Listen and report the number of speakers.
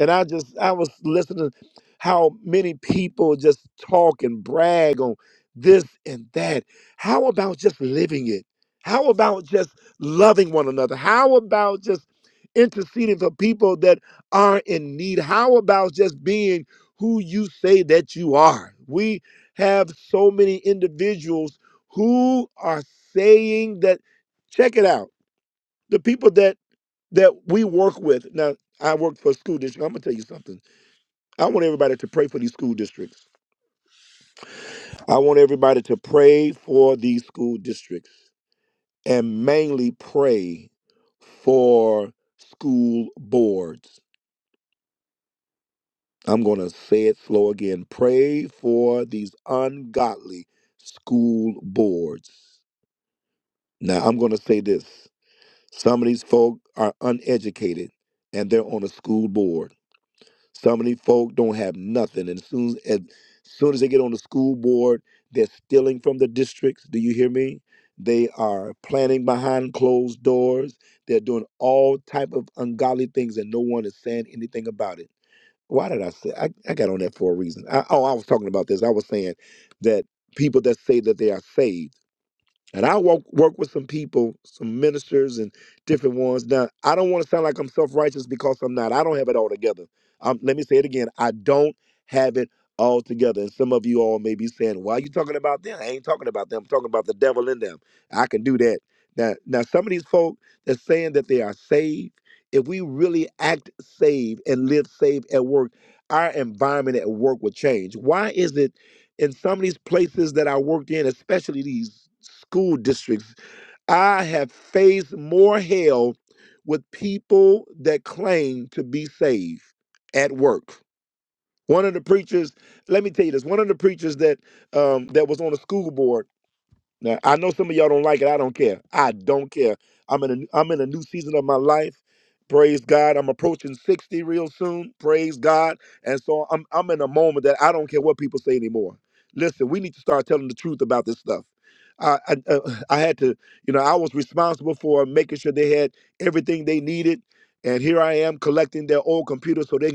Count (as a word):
one